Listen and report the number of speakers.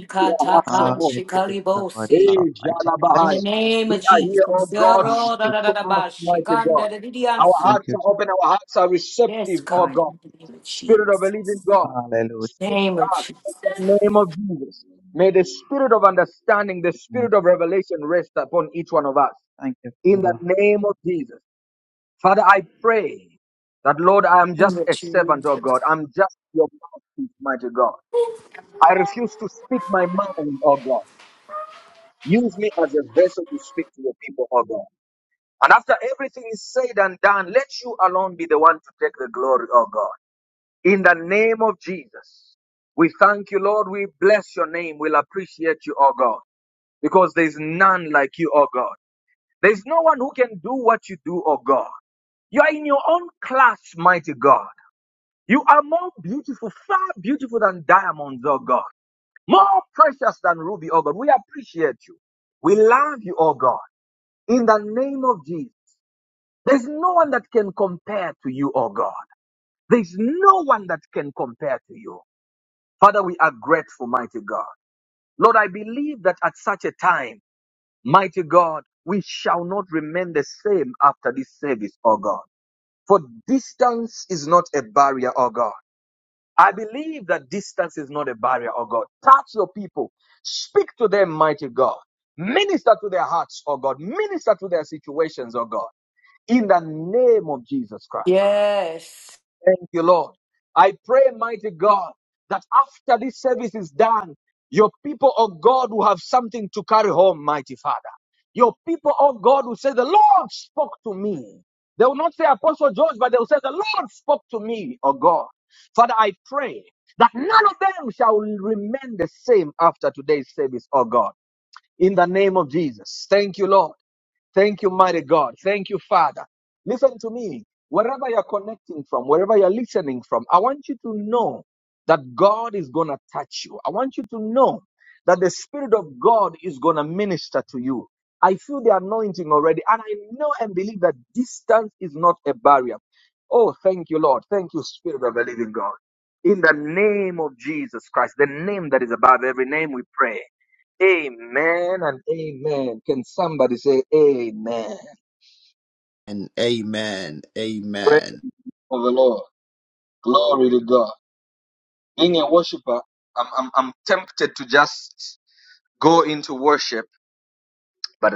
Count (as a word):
four